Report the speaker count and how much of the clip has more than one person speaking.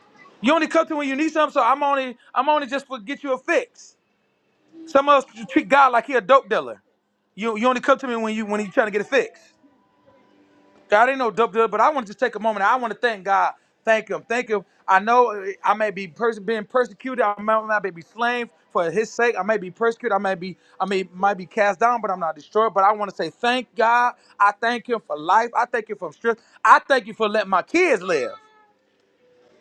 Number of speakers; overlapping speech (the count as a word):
one, no overlap